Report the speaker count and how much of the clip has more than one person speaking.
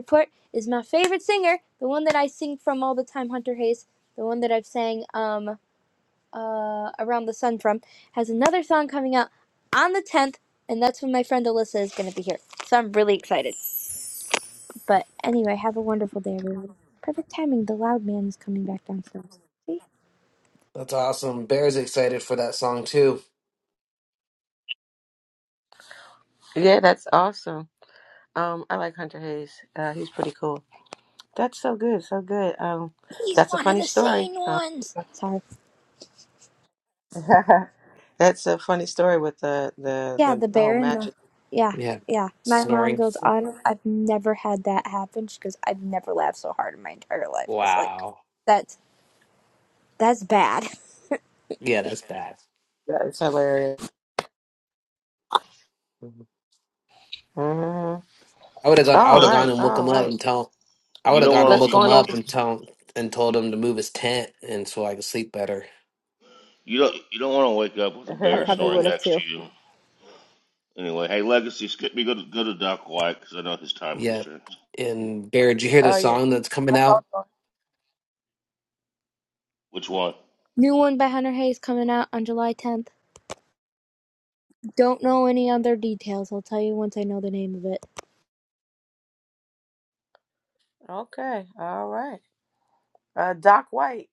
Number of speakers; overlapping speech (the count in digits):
4, about 8%